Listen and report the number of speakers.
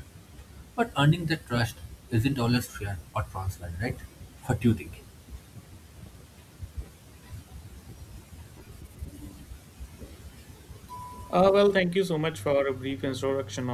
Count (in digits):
2